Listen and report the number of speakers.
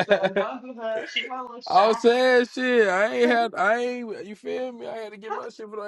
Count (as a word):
two